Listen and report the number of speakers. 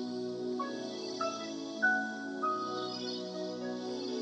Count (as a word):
zero